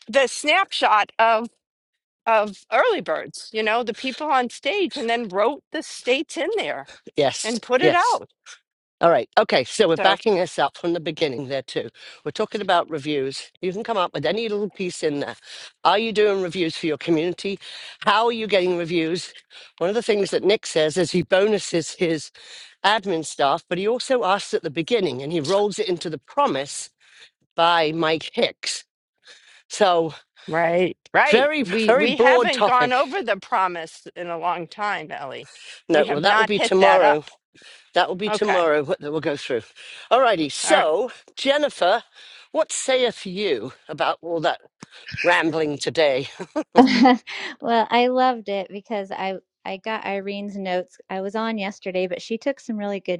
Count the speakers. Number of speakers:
three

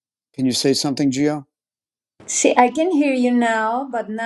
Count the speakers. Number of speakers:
two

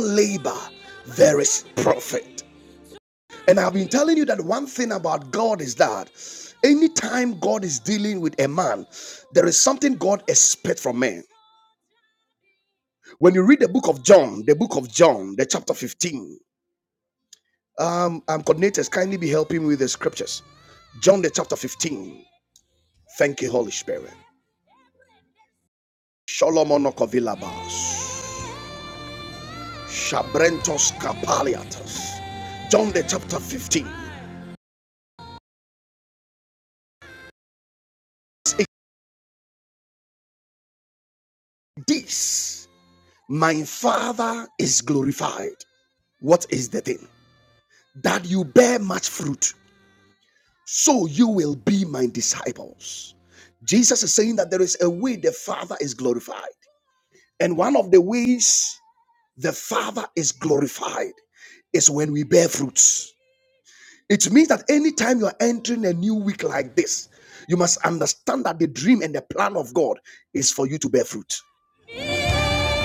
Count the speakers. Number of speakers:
one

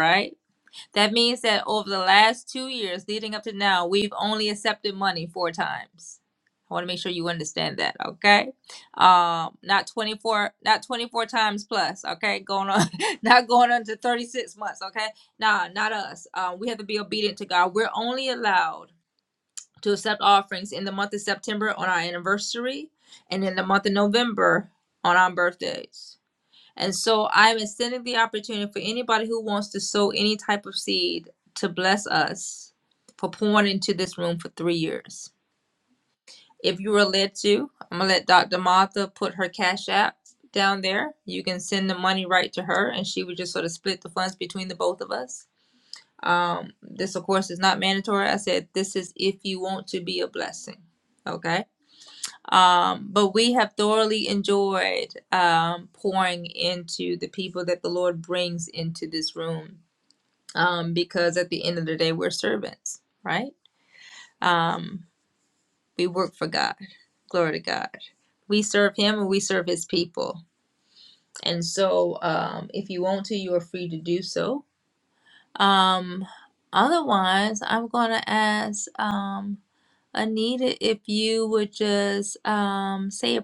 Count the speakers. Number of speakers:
one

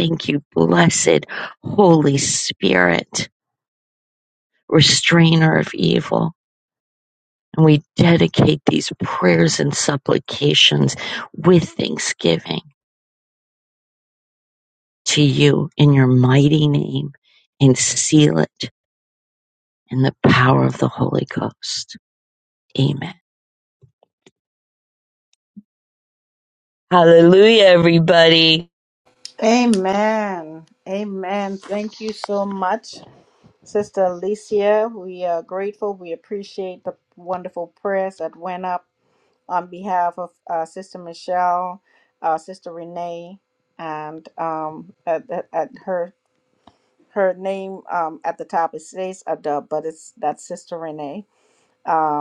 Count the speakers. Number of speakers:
two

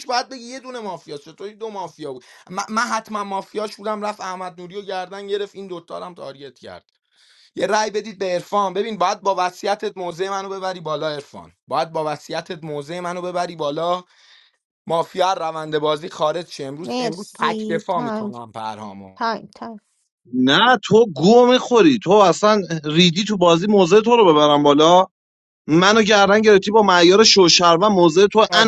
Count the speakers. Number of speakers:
three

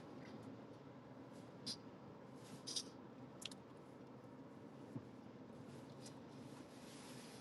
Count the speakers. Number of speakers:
zero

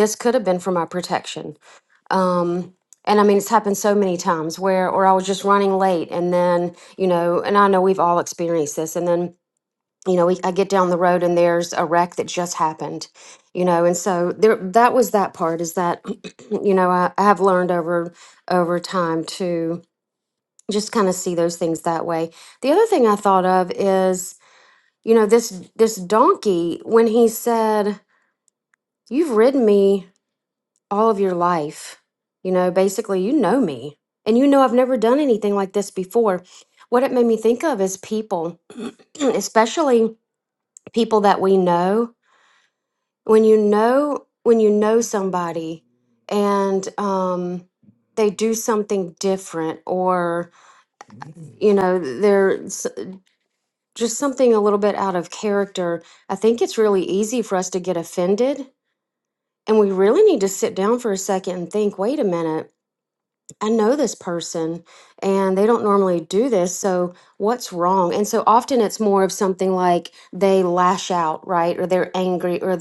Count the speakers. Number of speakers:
one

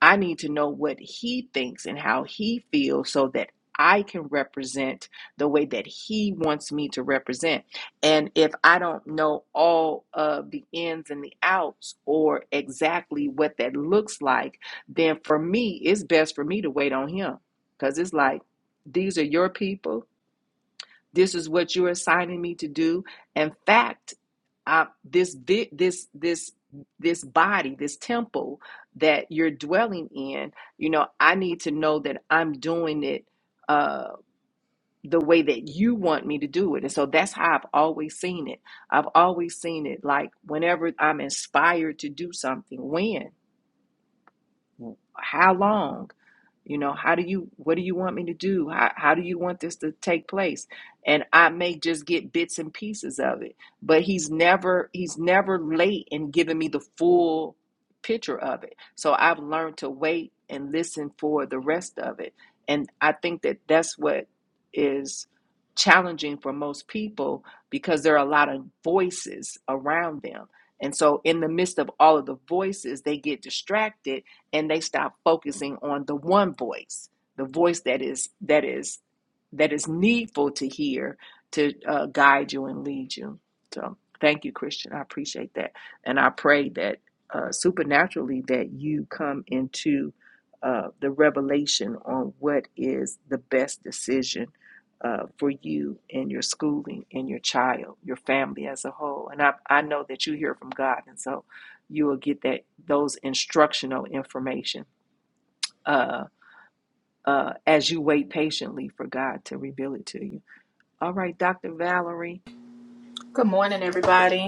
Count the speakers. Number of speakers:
two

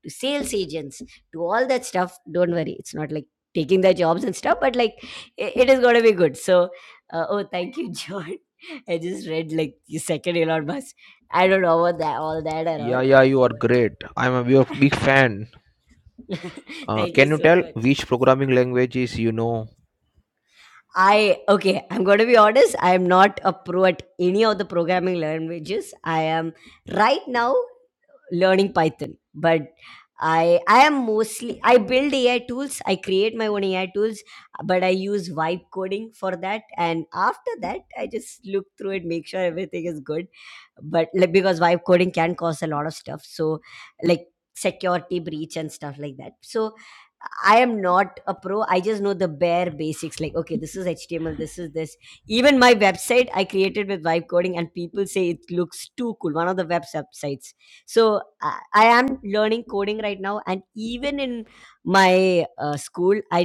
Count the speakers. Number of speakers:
two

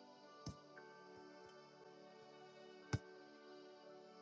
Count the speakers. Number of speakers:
zero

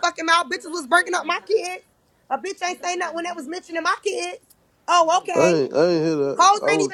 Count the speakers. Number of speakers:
two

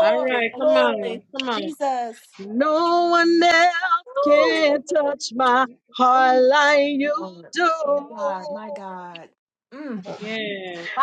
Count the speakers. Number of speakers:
three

